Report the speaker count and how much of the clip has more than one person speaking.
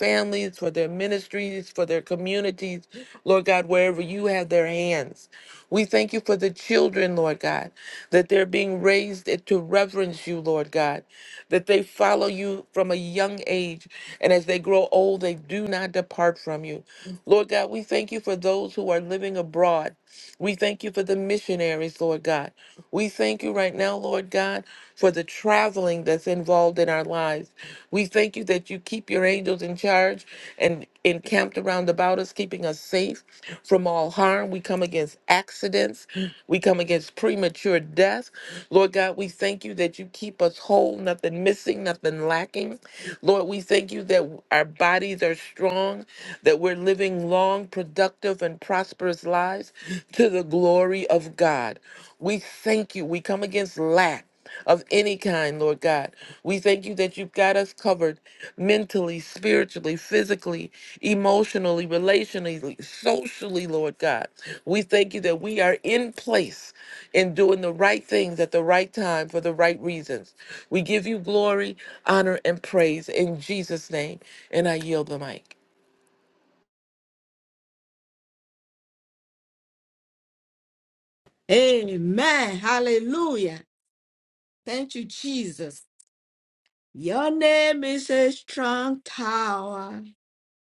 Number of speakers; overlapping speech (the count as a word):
two, no overlap